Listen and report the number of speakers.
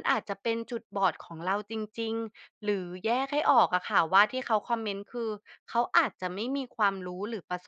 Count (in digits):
1